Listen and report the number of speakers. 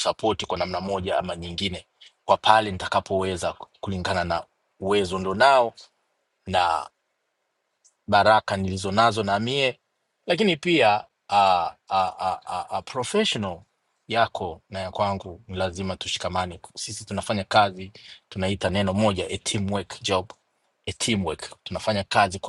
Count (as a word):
one